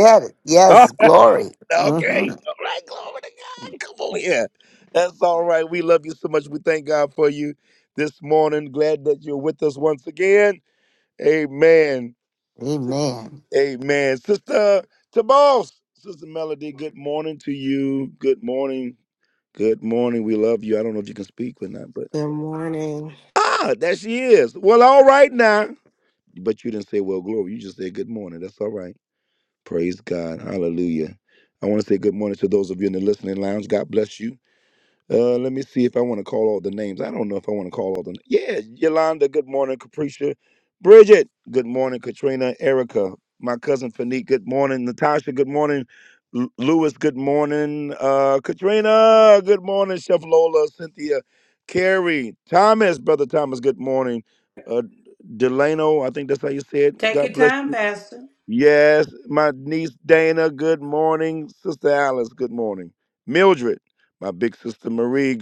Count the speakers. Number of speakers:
4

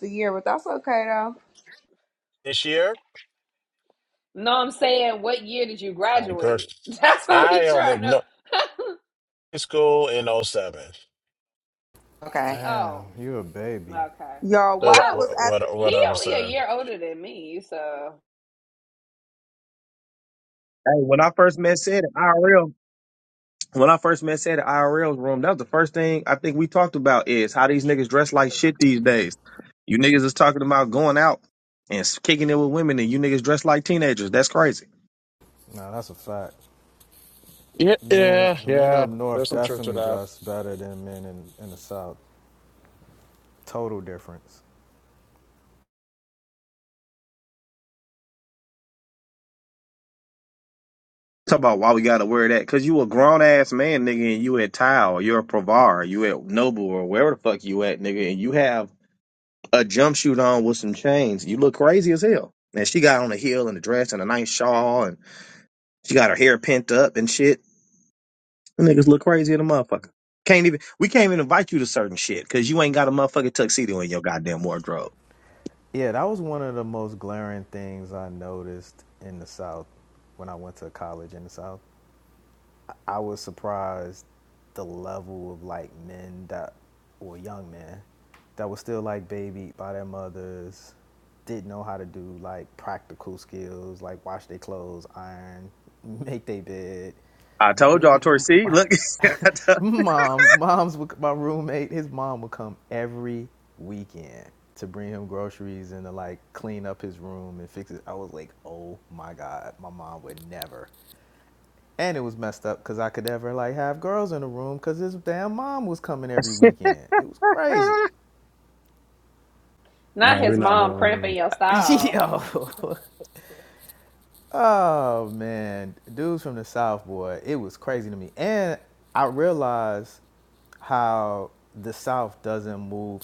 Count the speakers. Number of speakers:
5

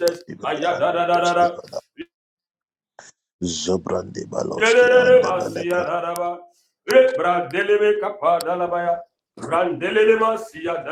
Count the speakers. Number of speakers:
2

